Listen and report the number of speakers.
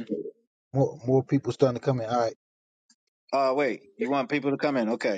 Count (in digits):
2